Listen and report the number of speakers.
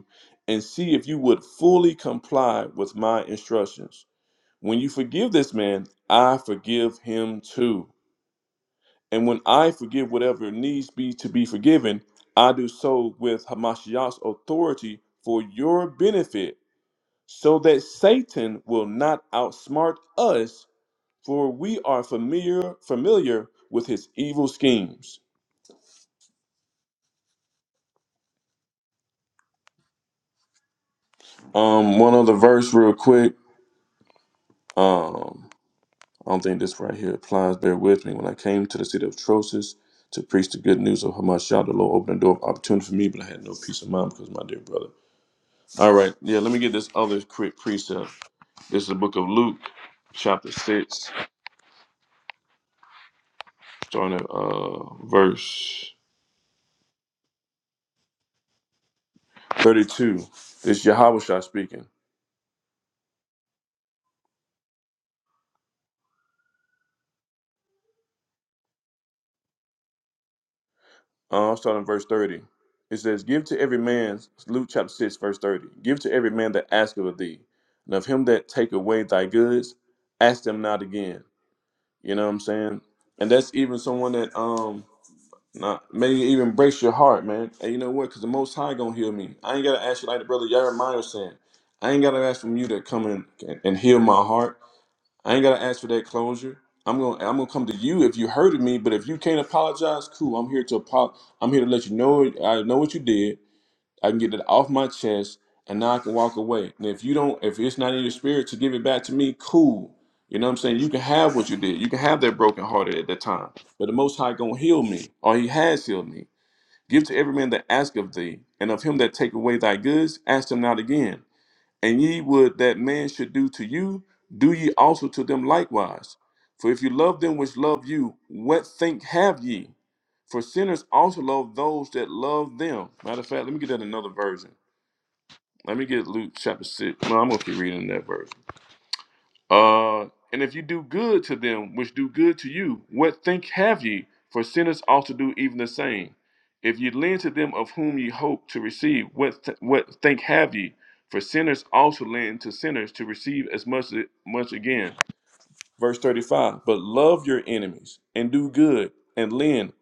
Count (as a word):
one